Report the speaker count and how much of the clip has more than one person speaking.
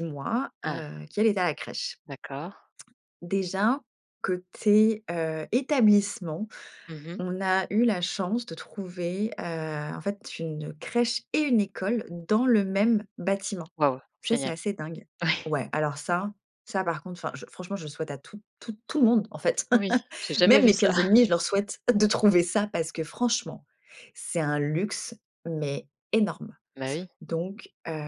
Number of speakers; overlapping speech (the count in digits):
2, about 3%